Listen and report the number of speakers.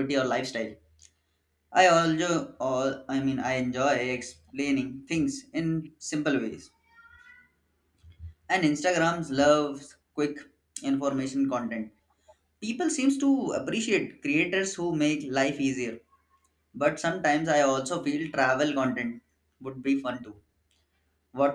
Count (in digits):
1